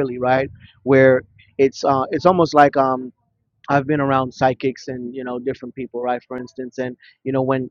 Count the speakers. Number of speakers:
one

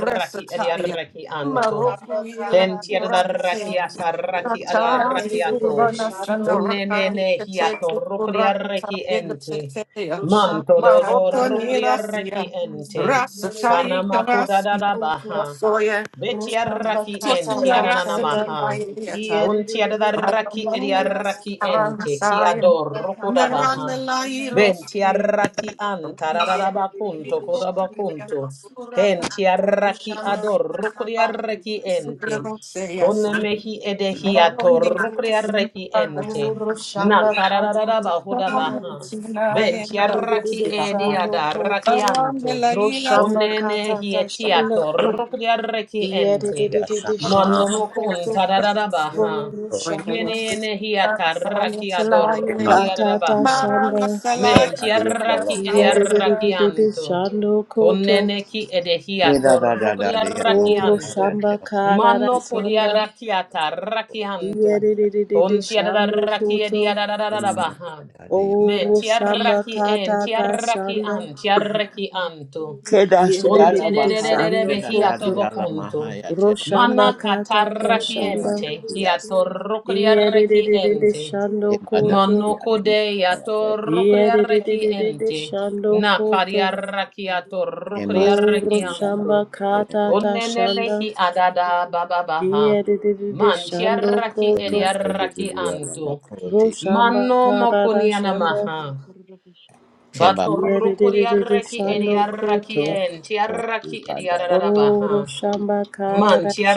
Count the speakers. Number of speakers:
four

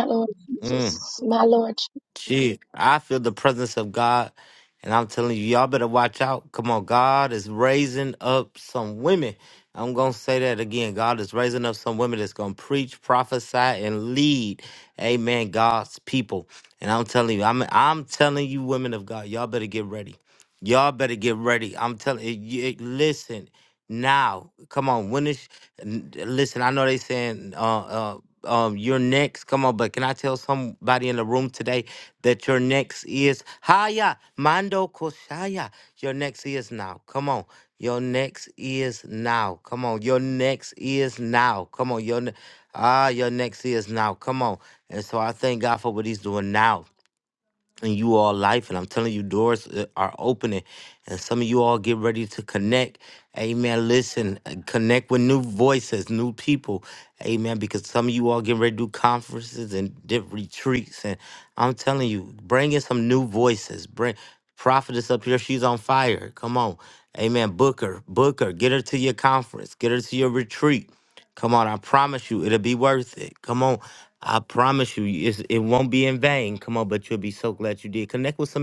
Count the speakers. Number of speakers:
two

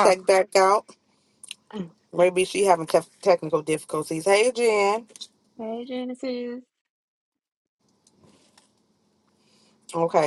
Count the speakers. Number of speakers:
two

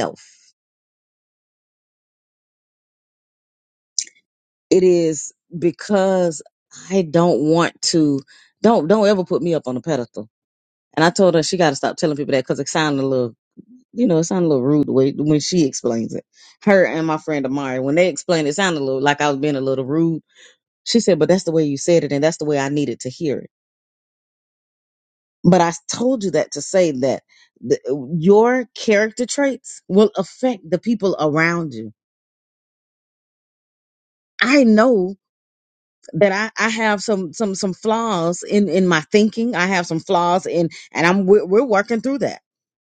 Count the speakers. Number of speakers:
one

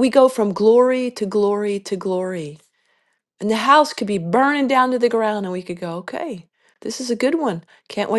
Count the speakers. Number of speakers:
one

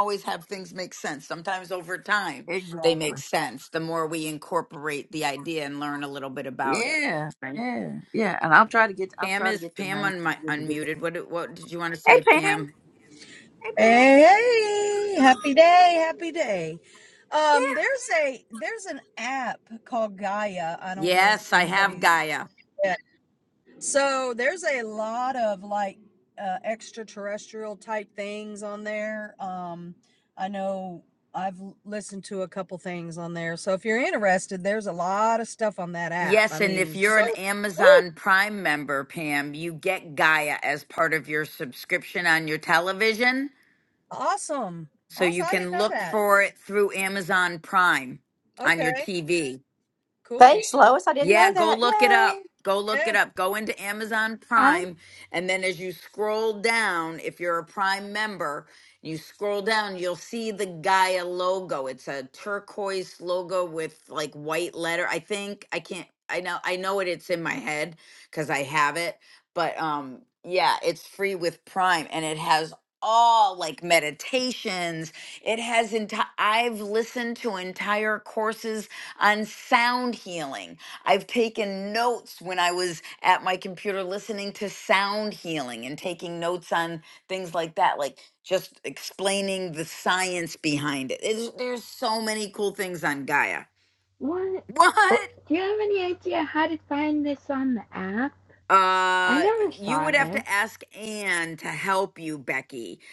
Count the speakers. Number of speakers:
five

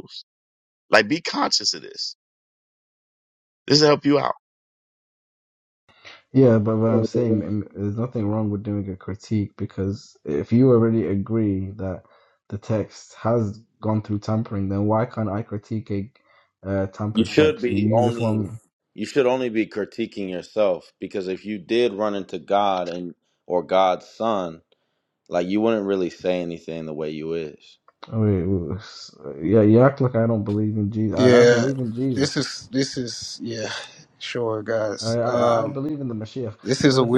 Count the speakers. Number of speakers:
four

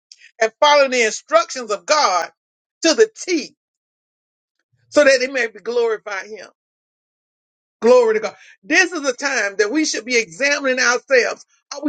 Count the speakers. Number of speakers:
one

